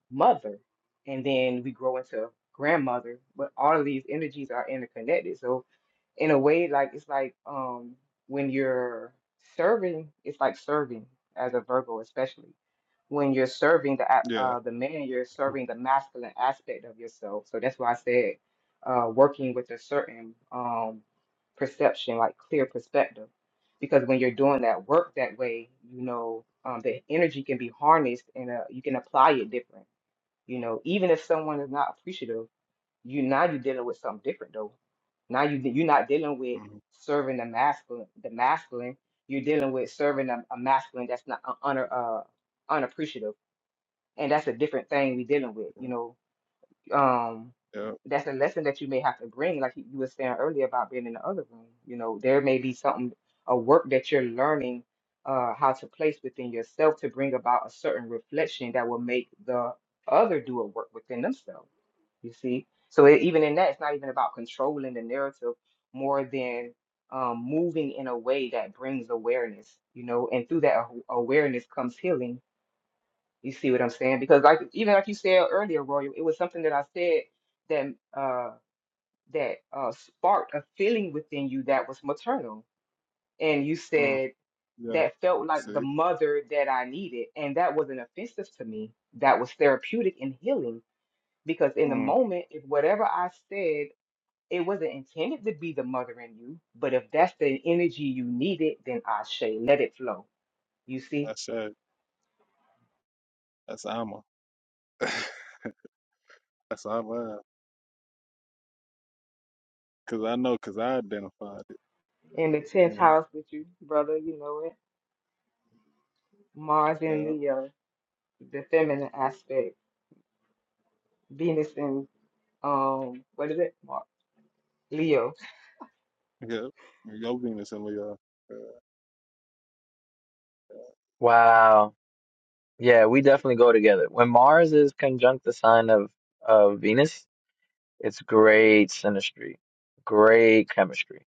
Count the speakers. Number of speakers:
3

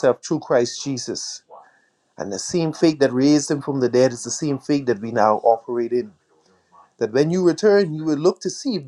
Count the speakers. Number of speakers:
1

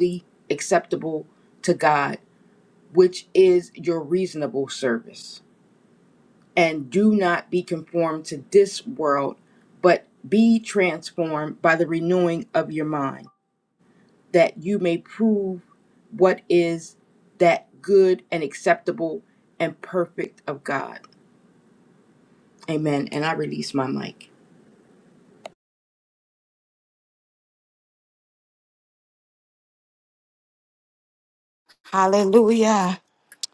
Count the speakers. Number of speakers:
2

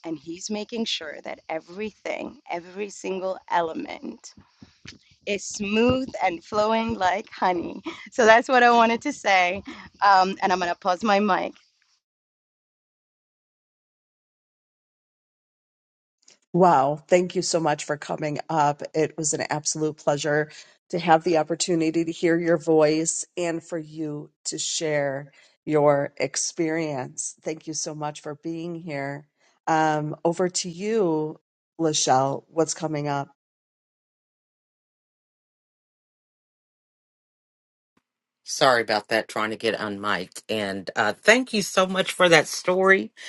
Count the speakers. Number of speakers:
3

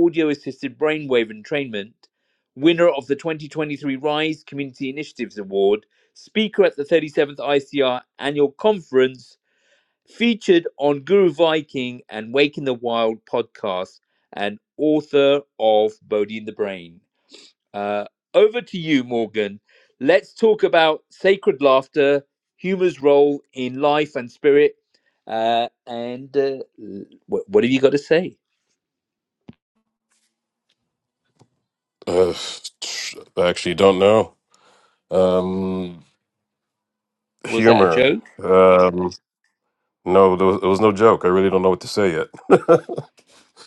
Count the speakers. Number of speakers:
2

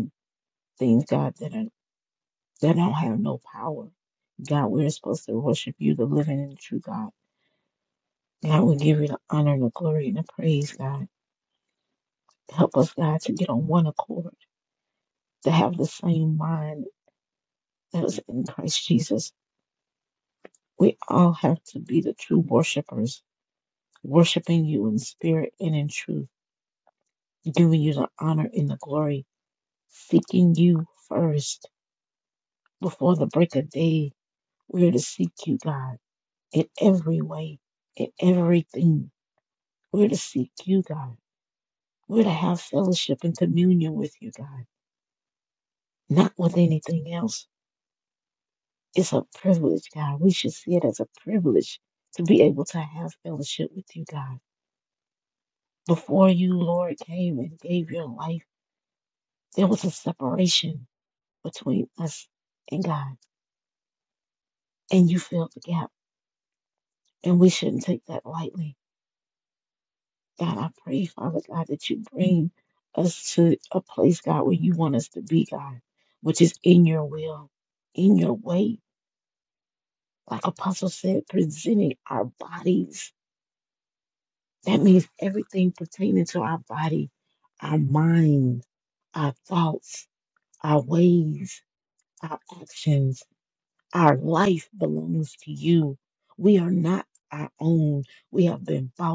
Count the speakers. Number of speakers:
1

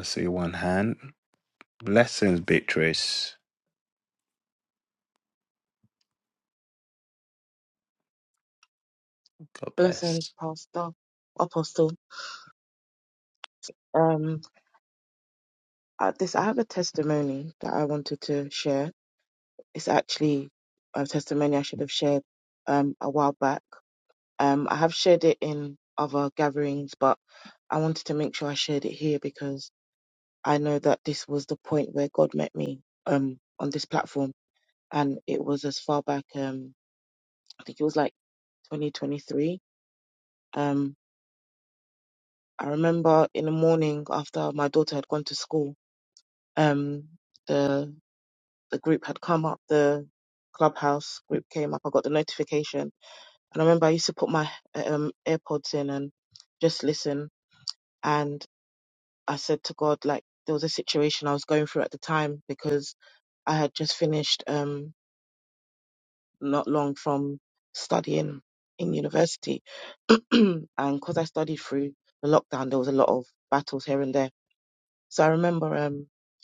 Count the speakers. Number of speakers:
2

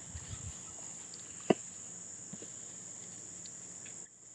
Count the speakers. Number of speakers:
0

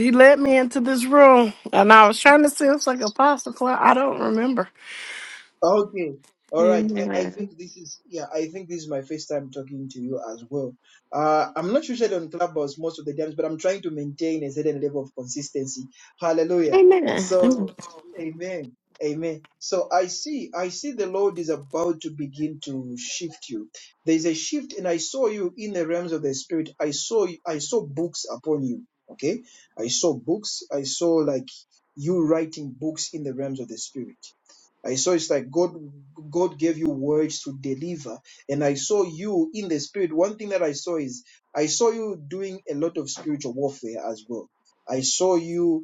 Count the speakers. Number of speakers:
2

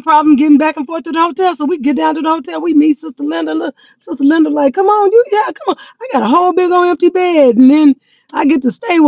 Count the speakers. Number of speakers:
1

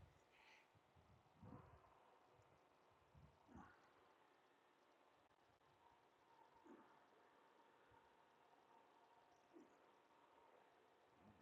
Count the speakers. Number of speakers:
0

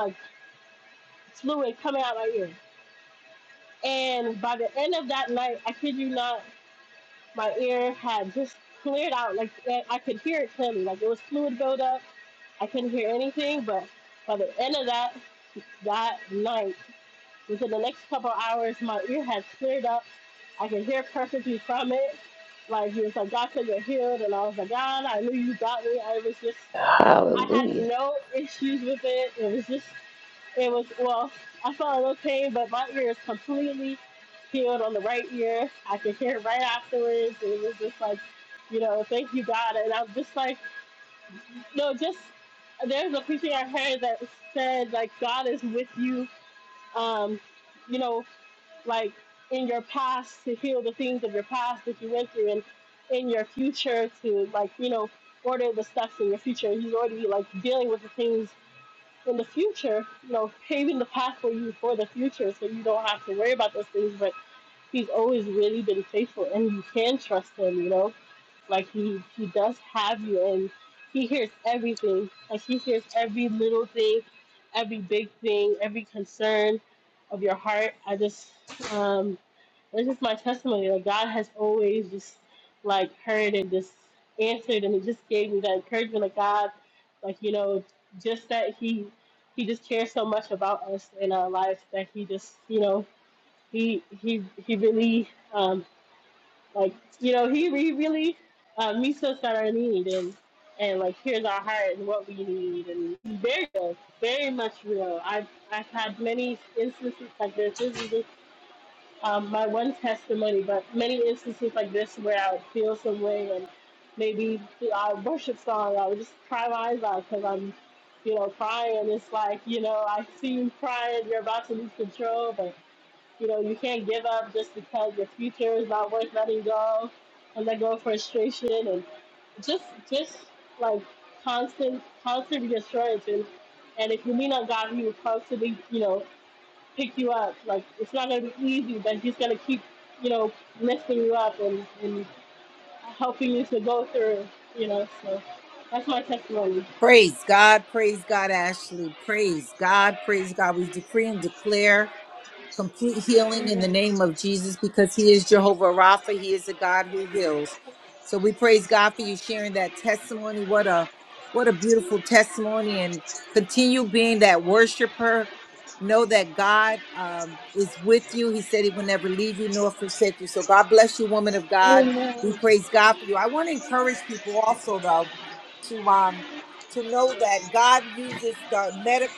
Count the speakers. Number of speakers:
3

